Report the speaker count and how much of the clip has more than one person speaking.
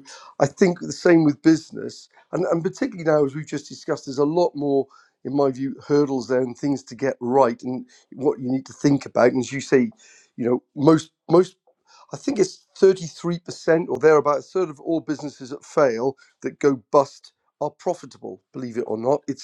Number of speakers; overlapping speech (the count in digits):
1, no overlap